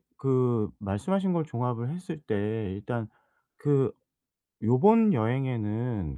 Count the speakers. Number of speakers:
one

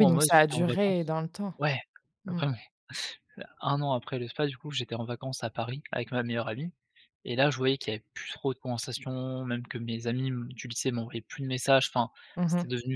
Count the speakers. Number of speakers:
two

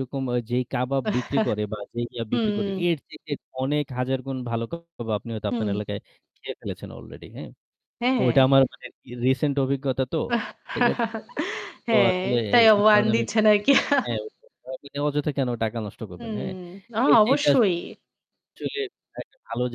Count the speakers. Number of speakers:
two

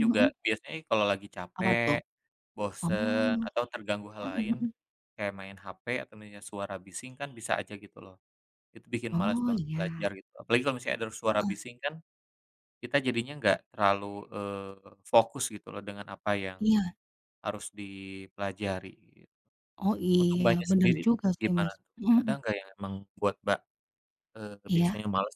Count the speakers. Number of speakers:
two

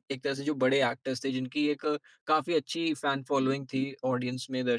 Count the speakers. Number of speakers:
one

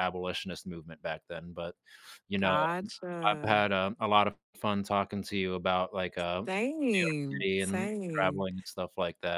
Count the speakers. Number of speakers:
two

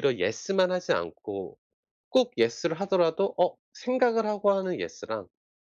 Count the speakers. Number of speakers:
one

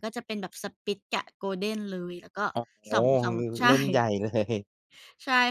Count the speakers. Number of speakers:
two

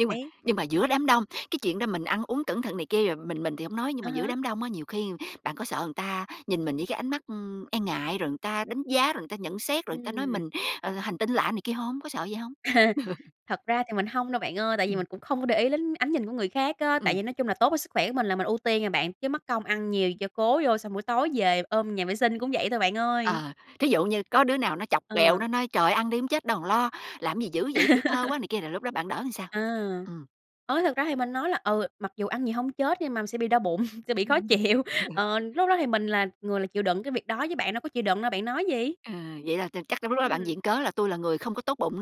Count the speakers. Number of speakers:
two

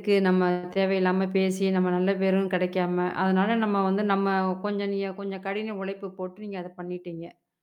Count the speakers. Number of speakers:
one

